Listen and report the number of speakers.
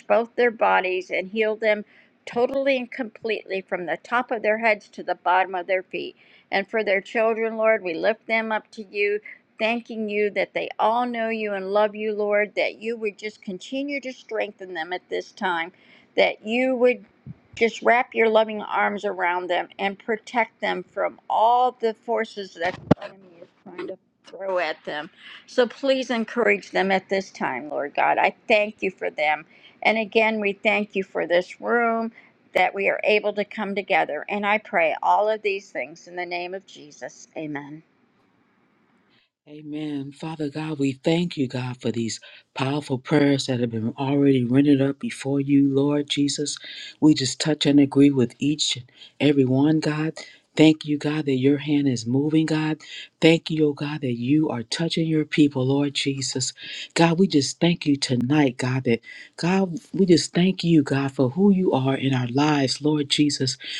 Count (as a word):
two